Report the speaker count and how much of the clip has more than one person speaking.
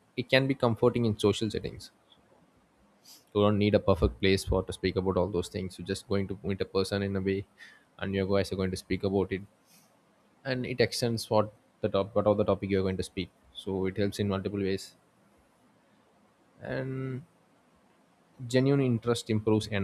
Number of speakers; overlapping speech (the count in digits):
1, no overlap